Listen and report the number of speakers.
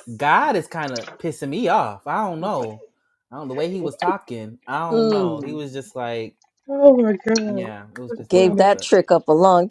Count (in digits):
3